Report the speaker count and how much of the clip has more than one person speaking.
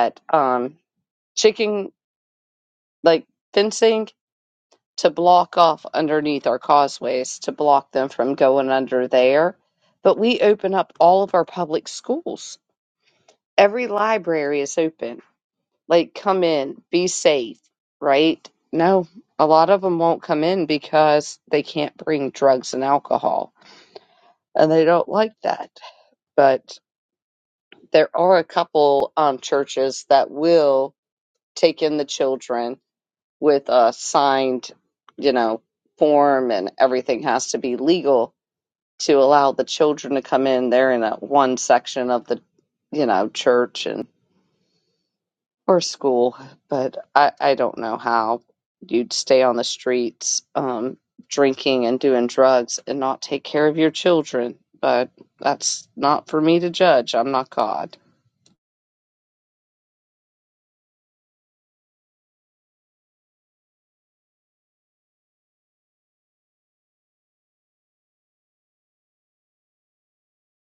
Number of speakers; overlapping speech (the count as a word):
one, no overlap